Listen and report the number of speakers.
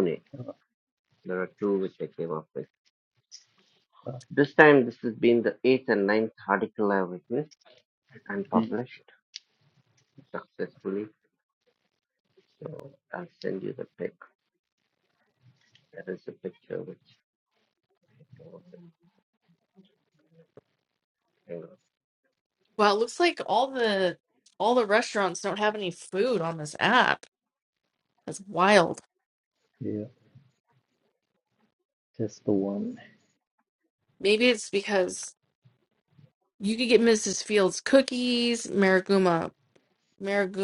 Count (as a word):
three